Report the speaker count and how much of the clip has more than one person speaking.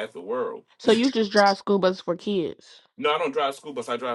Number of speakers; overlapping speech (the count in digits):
2, no overlap